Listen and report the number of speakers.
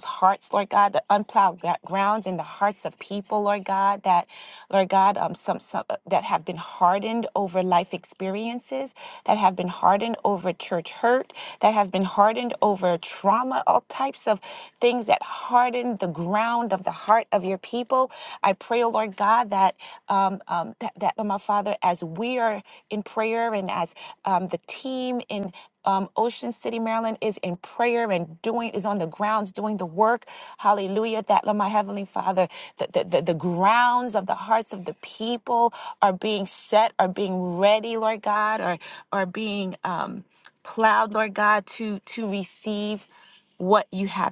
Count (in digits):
1